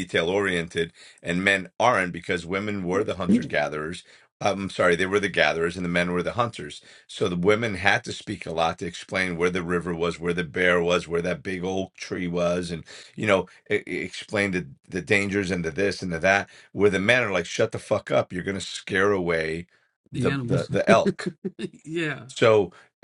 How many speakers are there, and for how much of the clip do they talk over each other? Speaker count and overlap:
2, about 3%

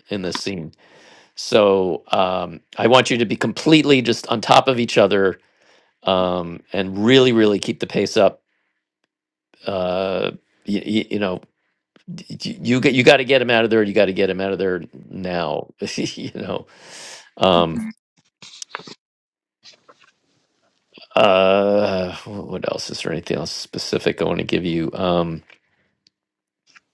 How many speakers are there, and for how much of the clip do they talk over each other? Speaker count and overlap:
1, no overlap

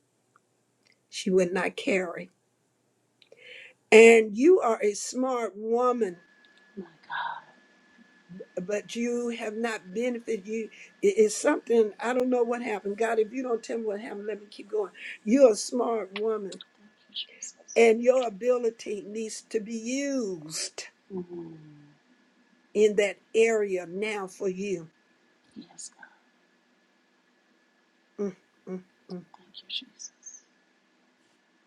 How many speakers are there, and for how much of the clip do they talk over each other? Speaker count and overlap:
2, no overlap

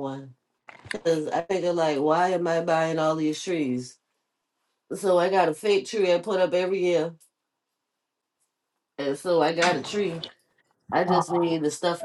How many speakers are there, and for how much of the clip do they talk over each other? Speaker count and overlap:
1, no overlap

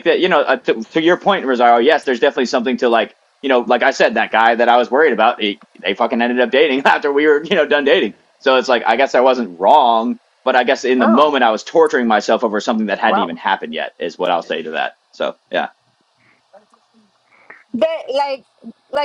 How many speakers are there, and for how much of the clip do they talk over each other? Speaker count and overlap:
2, about 3%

